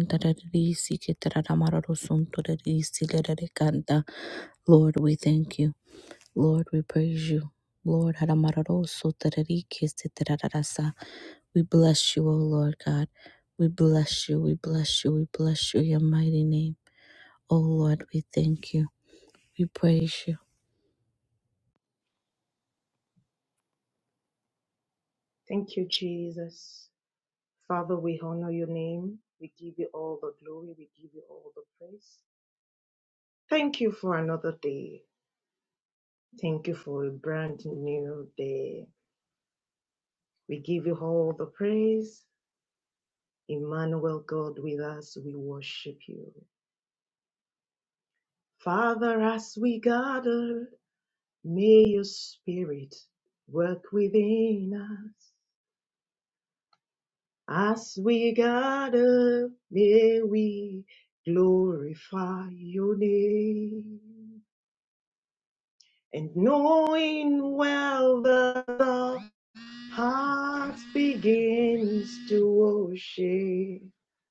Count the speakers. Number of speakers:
2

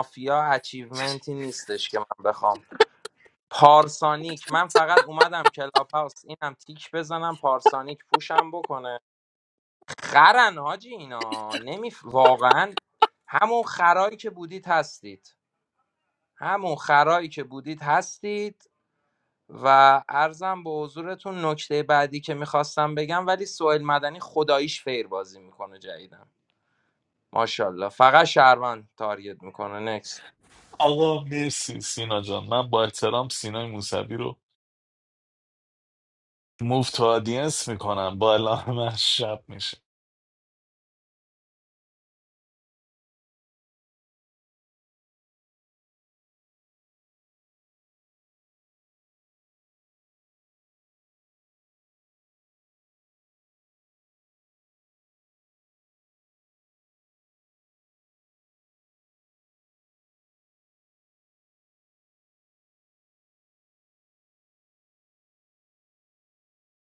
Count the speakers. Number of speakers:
2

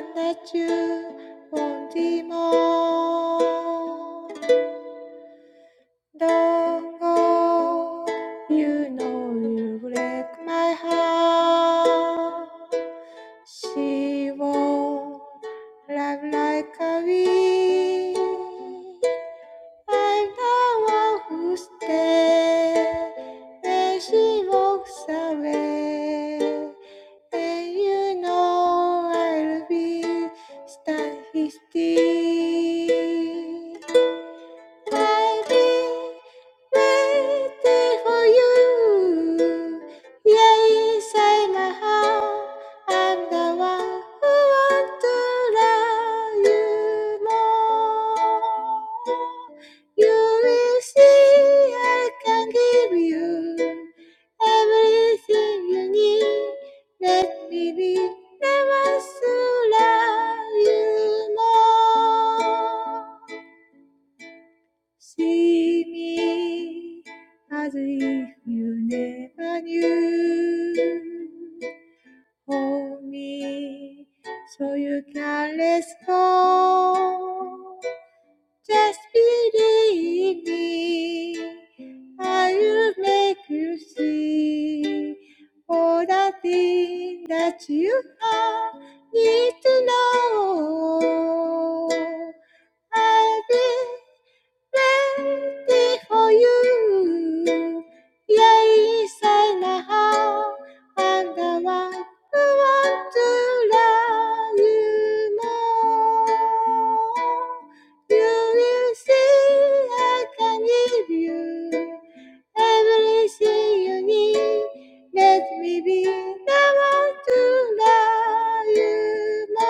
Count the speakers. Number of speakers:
1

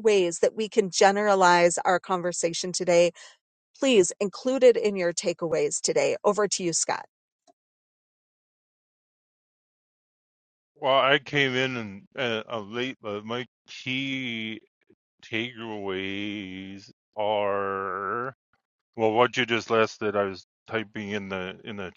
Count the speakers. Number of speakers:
2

